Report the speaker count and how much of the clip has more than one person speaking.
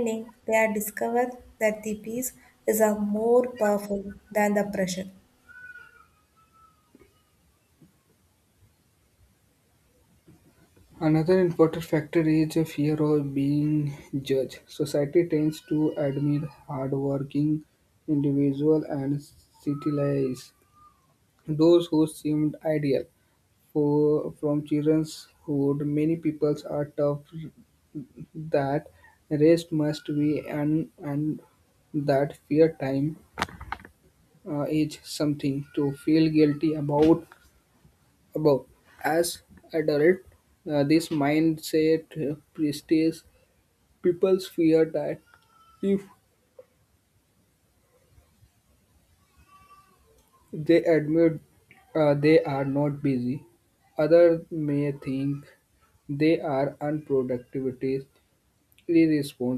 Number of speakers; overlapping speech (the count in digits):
2, no overlap